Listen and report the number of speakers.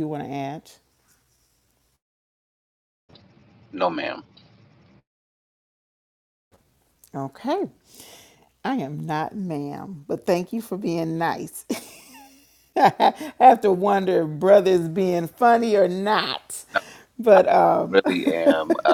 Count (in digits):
2